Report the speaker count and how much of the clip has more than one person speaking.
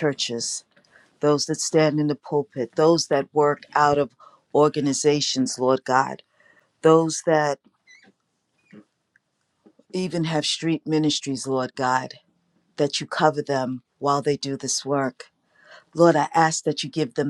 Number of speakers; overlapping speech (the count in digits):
1, no overlap